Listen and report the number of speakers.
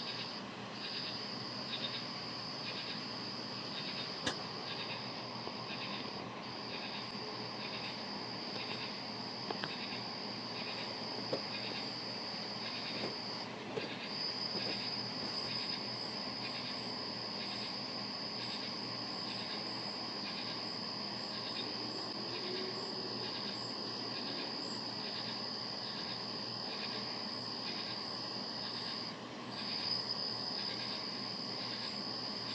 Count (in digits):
0